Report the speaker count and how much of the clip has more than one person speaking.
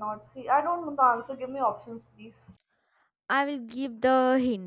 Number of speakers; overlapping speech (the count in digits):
2, no overlap